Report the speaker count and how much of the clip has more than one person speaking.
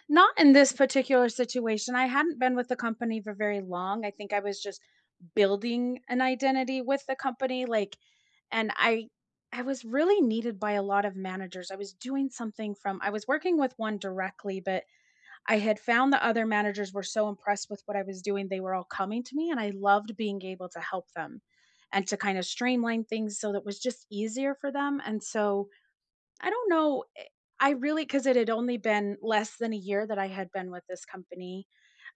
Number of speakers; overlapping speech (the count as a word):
one, no overlap